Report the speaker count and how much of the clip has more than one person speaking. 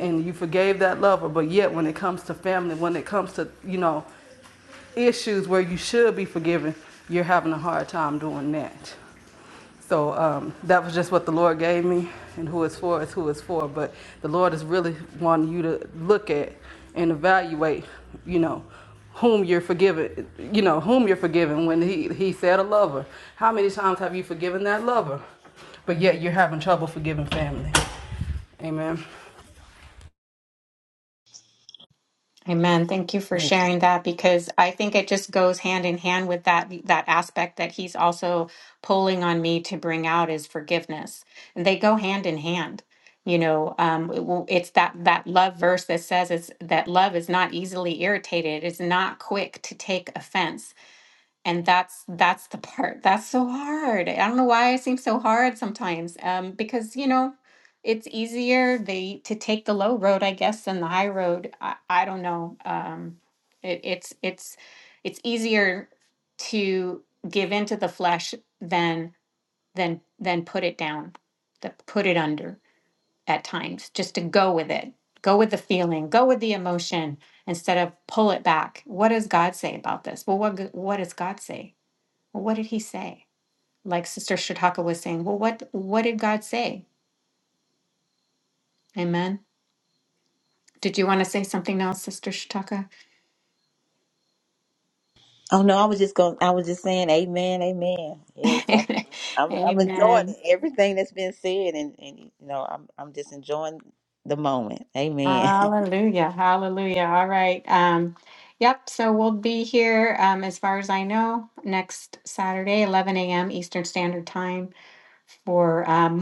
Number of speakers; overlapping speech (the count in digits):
3, about 1%